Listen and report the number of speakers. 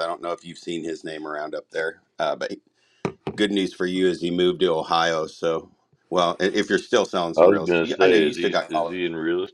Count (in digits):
2